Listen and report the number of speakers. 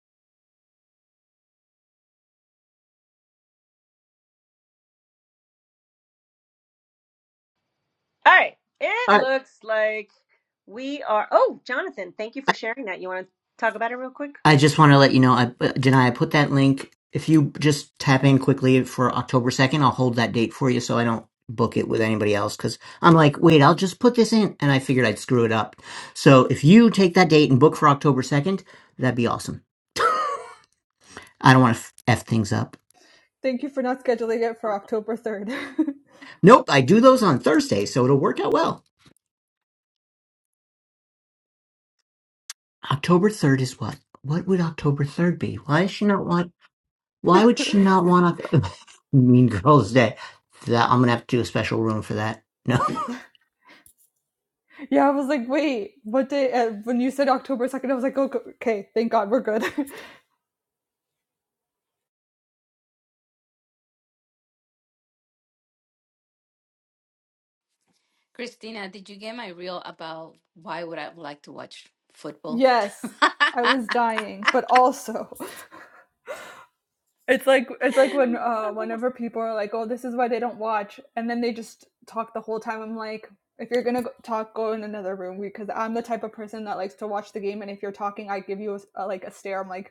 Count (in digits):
4